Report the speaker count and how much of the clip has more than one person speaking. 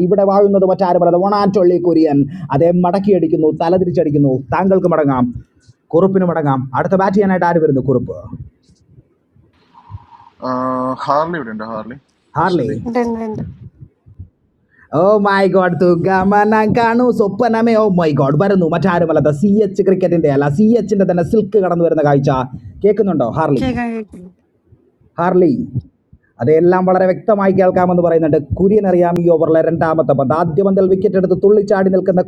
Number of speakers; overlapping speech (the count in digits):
3, about 2%